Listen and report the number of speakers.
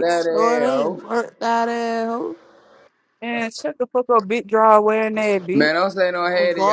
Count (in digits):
3